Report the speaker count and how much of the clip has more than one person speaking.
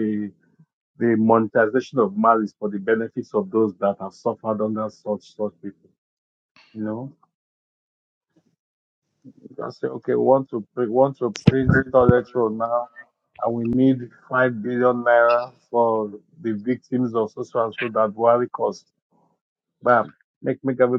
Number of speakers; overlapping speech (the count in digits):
1, no overlap